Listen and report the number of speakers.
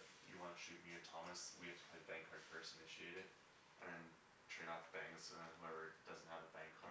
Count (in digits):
1